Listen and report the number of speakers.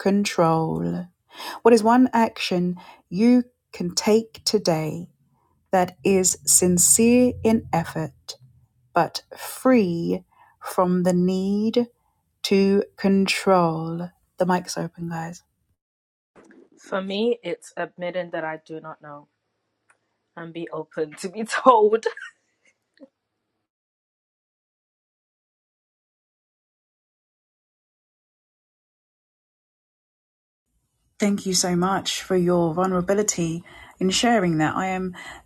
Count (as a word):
two